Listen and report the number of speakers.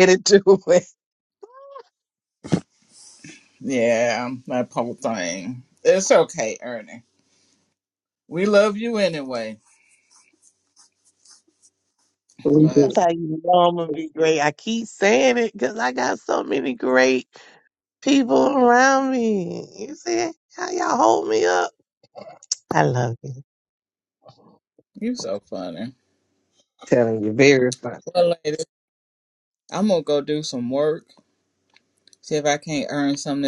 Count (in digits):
3